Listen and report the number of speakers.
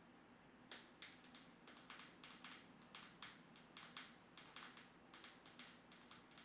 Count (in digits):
0